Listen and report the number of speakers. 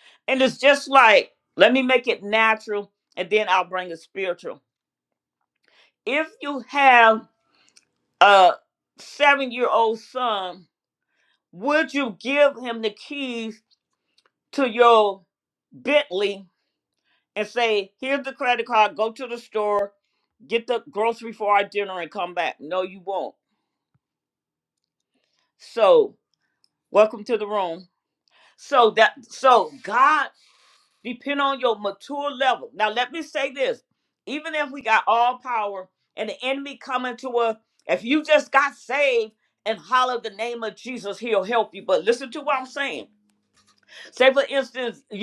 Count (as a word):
one